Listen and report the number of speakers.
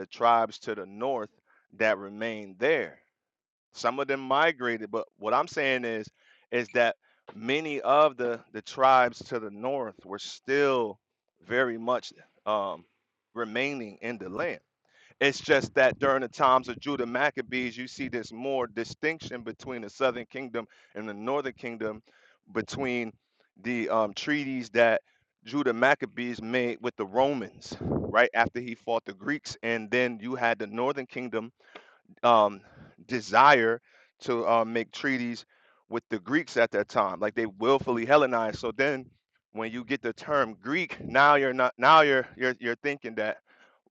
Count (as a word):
one